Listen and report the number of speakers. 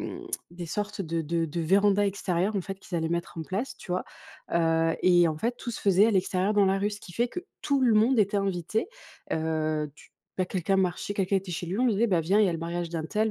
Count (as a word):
one